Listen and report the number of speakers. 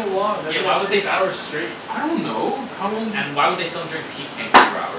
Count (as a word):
three